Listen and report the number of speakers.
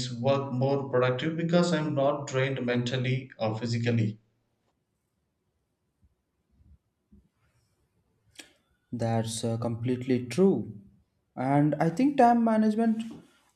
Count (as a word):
two